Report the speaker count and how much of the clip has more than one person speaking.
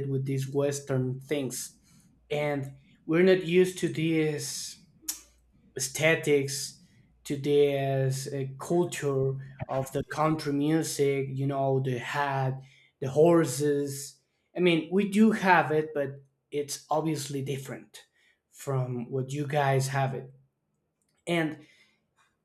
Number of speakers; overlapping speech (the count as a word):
one, no overlap